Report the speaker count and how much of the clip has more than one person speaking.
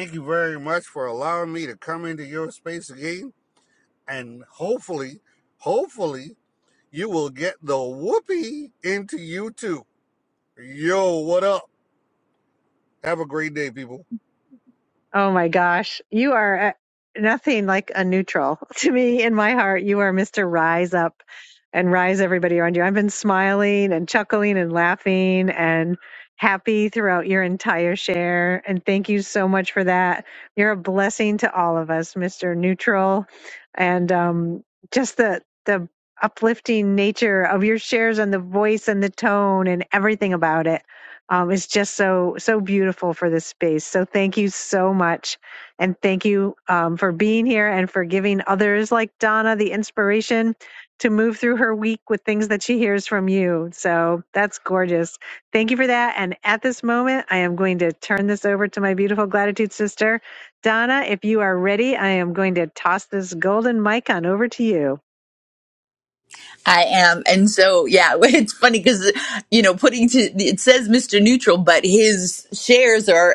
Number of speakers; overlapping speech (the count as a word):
three, no overlap